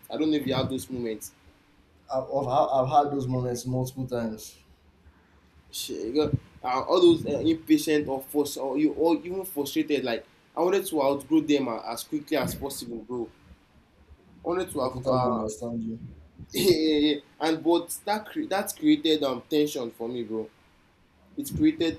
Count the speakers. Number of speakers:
2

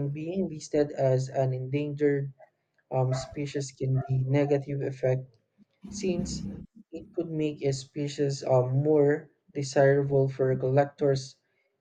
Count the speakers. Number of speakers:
1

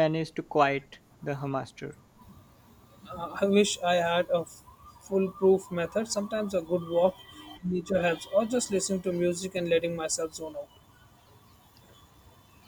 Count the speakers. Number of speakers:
2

